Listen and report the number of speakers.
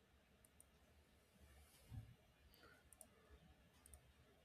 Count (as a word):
zero